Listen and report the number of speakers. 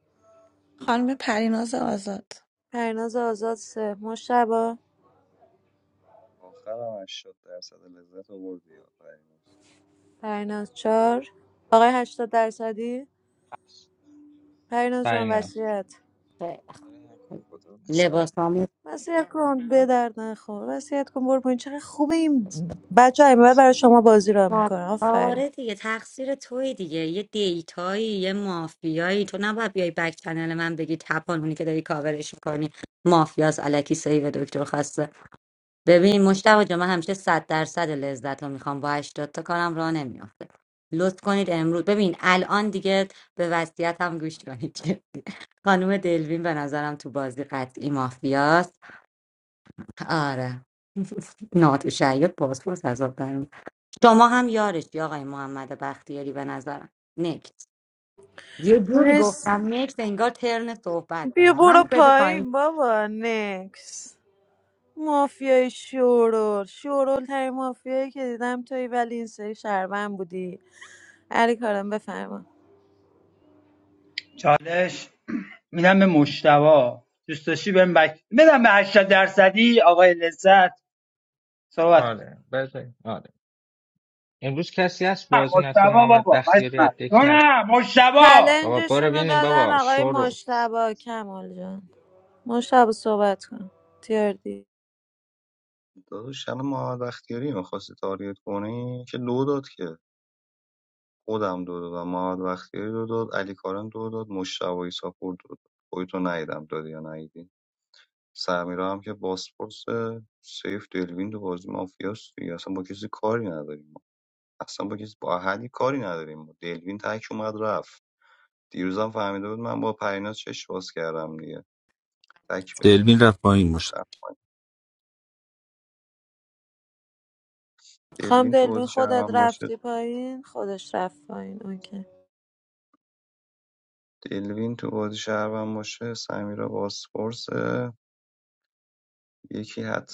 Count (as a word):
seven